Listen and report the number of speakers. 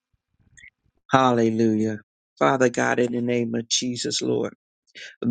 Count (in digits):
1